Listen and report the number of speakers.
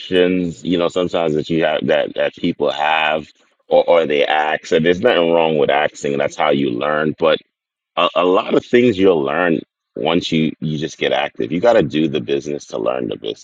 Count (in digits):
1